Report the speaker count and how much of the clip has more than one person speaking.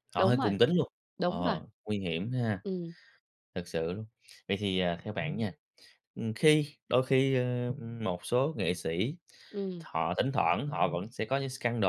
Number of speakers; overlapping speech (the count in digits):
2, about 6%